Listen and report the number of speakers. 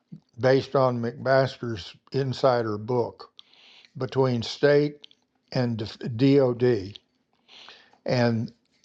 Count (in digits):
1